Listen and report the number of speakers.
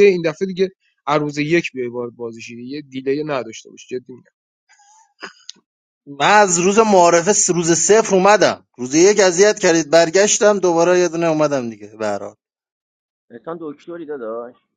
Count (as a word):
three